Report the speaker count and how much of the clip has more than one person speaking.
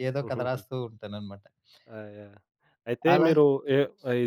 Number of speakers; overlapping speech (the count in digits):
2, about 15%